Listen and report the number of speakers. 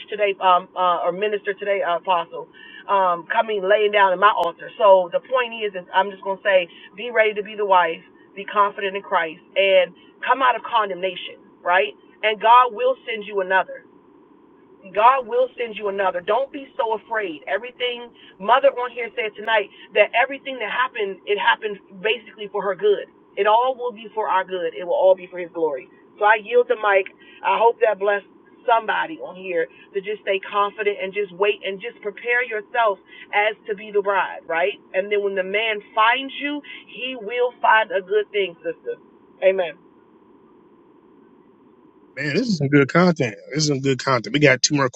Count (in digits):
2